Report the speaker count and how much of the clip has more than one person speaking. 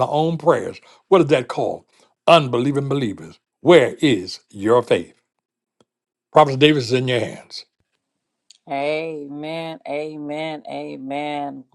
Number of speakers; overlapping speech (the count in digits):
2, no overlap